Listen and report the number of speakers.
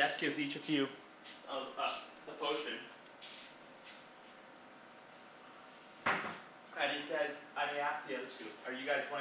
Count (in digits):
1